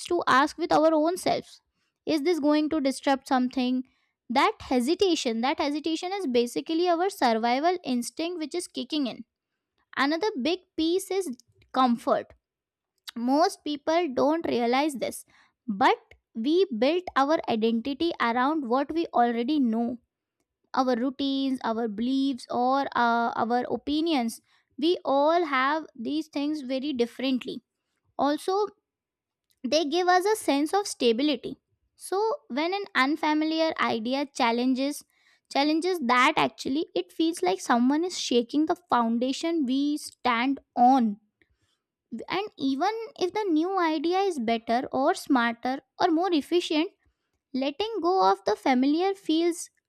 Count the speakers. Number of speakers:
1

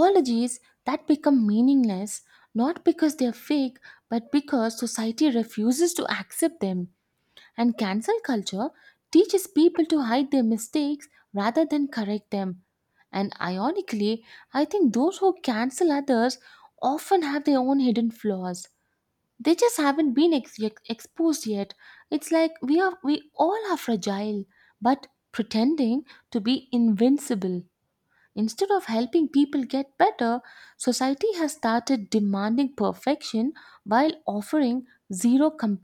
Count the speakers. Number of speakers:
1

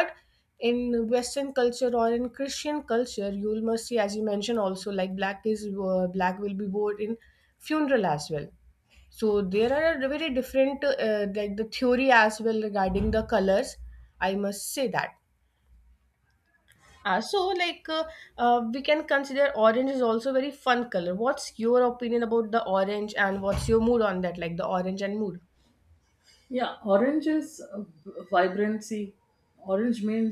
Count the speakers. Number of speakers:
2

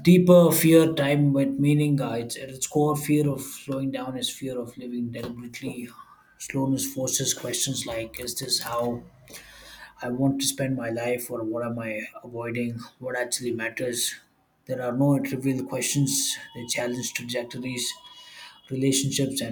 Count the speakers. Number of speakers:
1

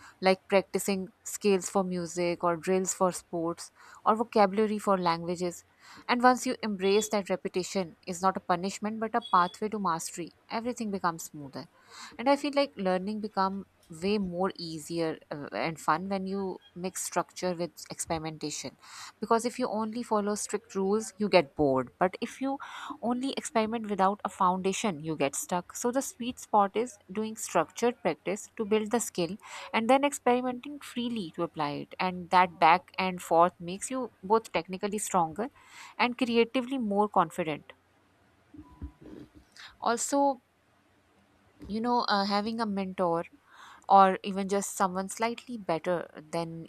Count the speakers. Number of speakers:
1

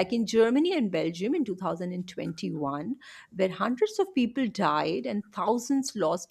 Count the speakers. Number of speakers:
1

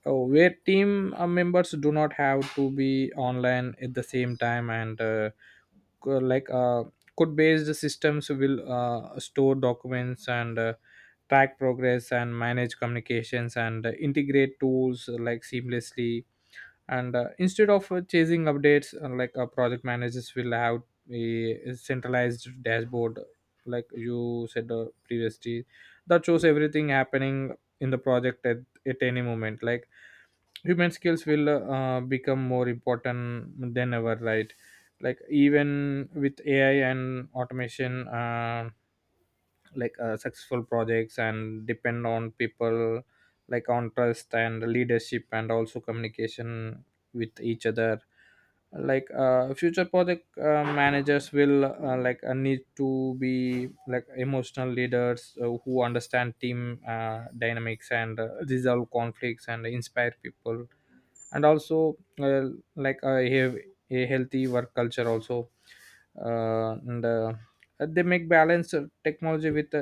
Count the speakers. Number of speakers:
1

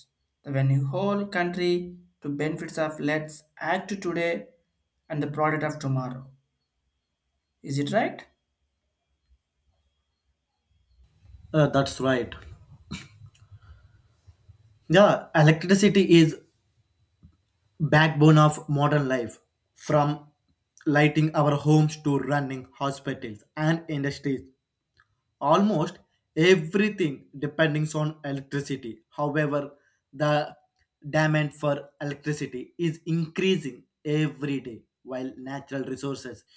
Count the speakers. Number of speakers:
2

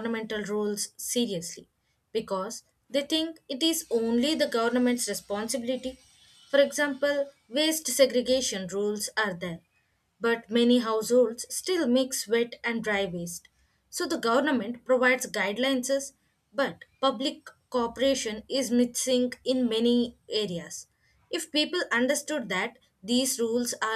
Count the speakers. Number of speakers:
1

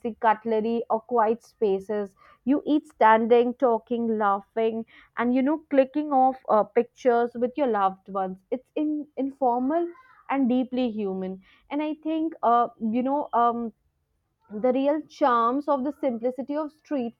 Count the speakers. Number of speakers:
1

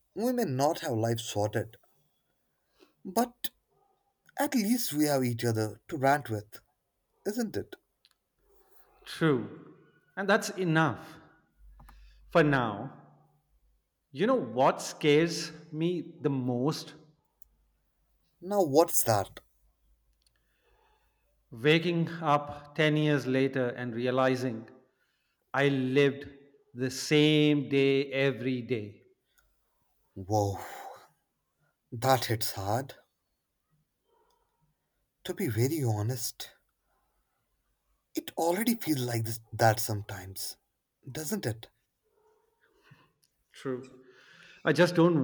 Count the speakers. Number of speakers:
2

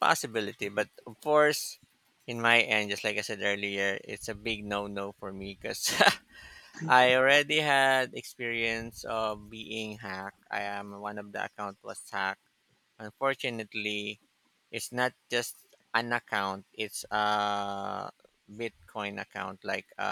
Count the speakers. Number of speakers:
1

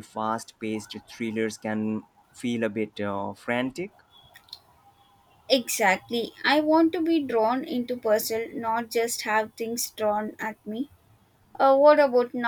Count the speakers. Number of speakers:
2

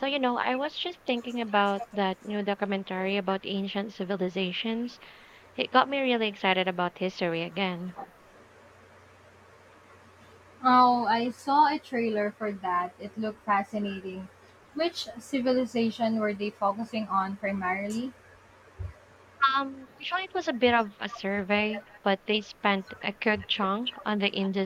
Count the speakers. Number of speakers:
2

